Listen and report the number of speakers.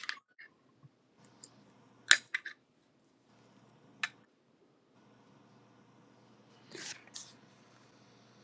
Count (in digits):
0